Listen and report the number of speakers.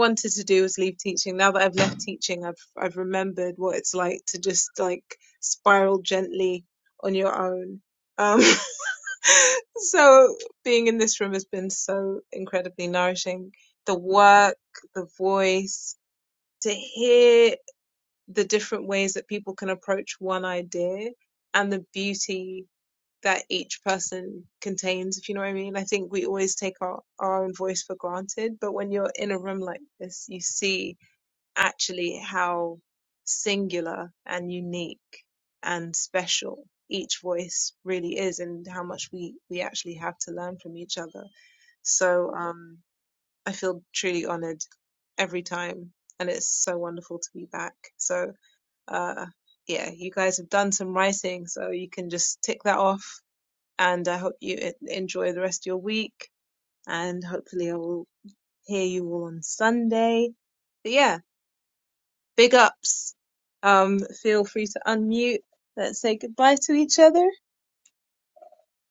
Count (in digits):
1